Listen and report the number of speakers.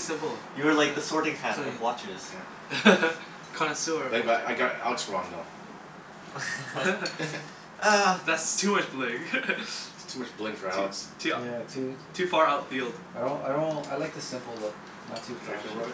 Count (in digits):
4